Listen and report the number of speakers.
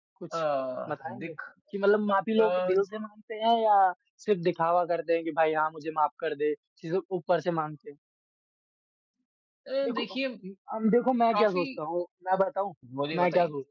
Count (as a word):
two